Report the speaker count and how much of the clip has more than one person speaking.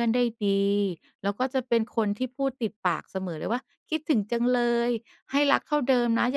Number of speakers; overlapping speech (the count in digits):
1, no overlap